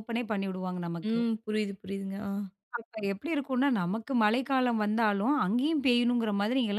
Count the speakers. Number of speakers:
2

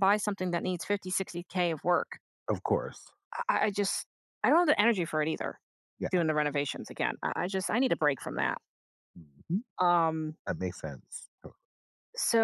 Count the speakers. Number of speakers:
2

